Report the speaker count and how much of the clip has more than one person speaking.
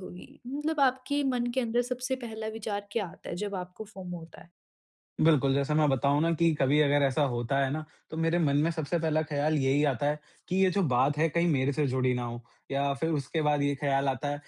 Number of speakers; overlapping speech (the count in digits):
2, no overlap